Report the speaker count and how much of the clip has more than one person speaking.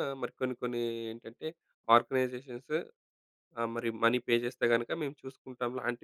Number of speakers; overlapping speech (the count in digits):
1, no overlap